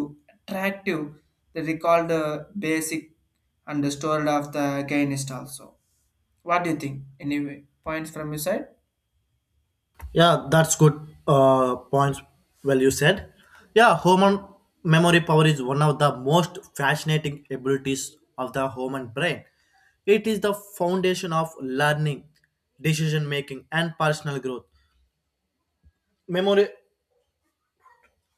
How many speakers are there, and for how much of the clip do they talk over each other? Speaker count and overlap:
2, no overlap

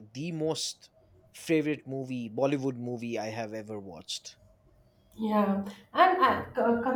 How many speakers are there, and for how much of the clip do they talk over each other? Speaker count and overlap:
2, no overlap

